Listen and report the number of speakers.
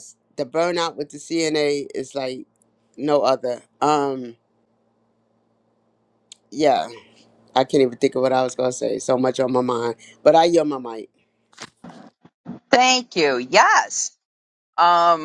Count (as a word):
two